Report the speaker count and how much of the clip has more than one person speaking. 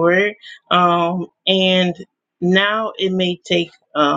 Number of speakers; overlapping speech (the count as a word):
one, no overlap